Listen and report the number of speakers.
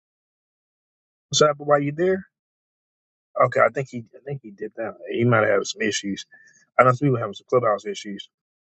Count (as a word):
one